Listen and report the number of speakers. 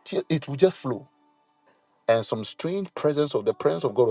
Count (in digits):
1